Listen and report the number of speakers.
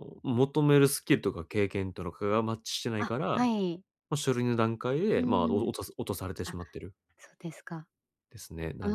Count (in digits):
2